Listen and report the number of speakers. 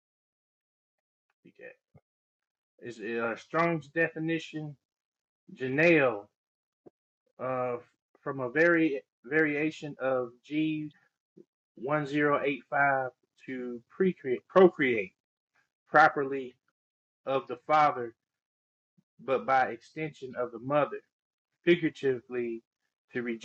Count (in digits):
1